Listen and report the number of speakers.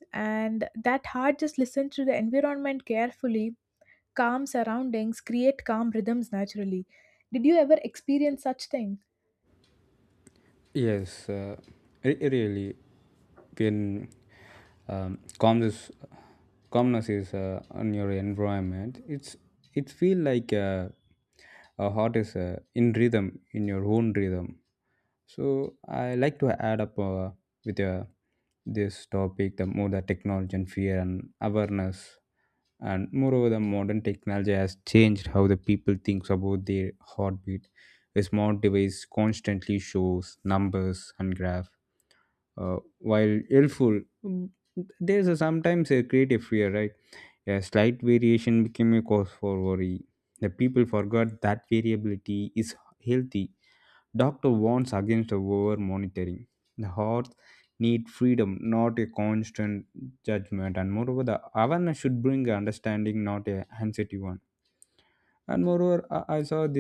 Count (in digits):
2